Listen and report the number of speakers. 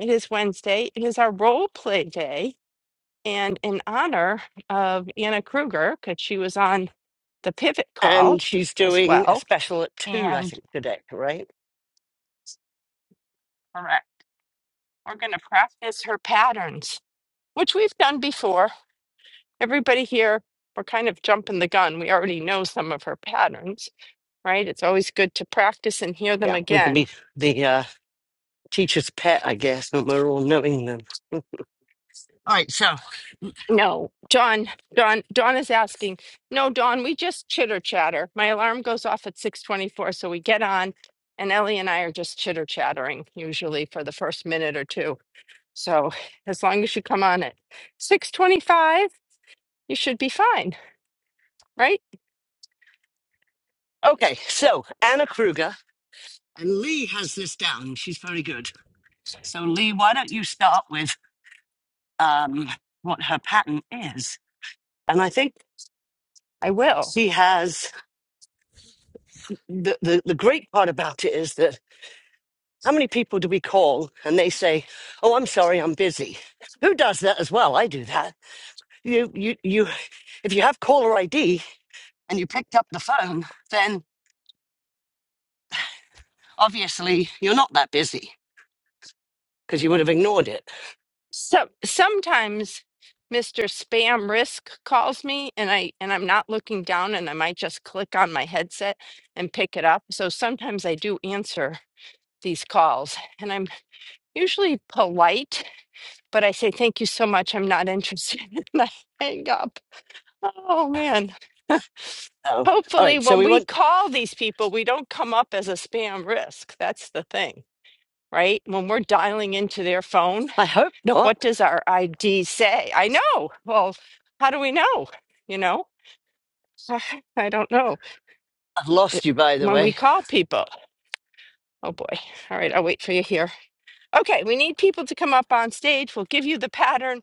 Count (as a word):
two